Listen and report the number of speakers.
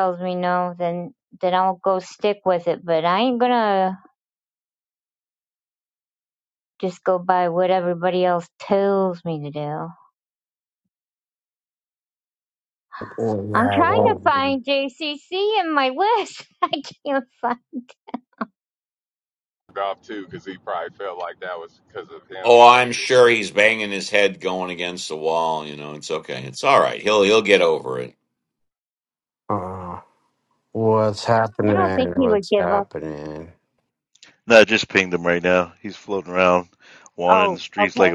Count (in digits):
5